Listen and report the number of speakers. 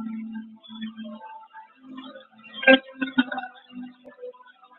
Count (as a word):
zero